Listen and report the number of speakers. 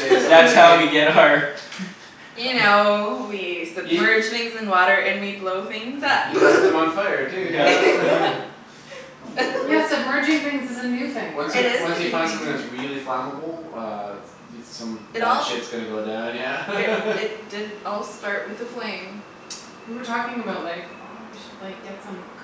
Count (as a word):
four